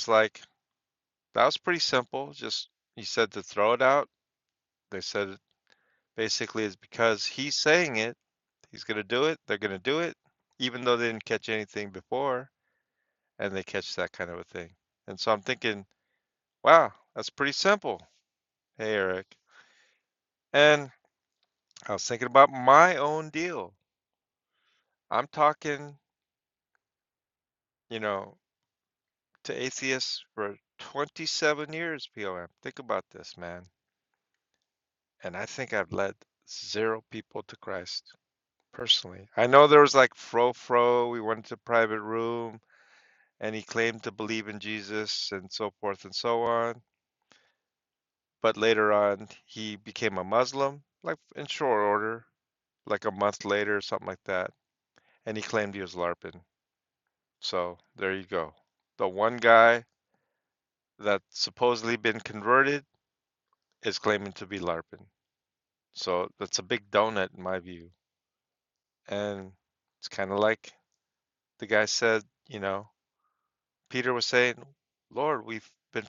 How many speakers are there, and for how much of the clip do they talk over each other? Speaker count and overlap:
1, no overlap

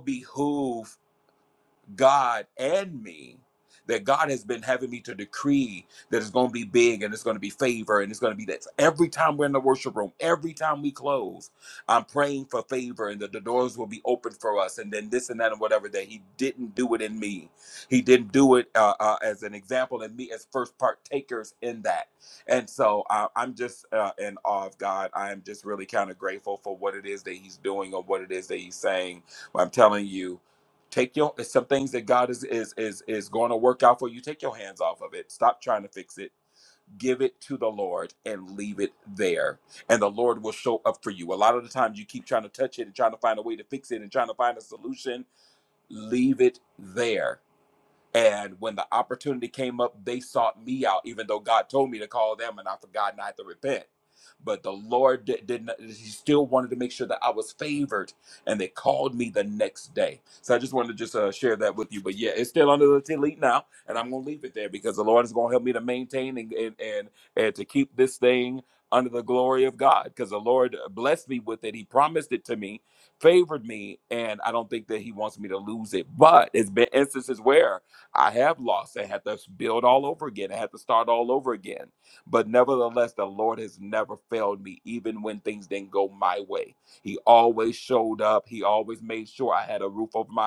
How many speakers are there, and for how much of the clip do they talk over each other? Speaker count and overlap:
1, no overlap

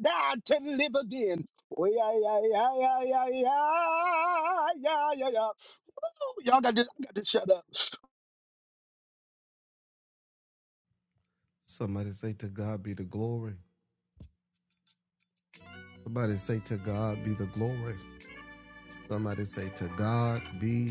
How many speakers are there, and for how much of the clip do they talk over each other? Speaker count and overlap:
2, no overlap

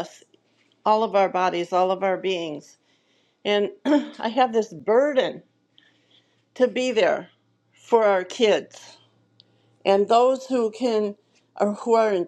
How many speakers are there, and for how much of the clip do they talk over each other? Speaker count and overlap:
1, no overlap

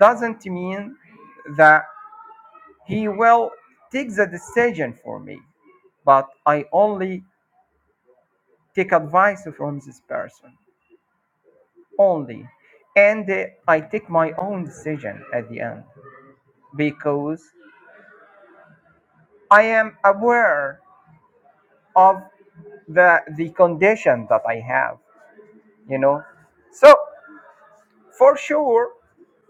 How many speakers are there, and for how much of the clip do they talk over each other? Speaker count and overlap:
1, no overlap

